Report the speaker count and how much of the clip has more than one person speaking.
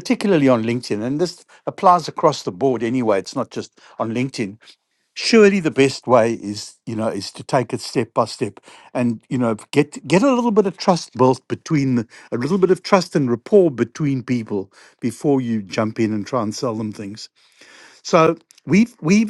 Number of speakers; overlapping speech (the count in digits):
1, no overlap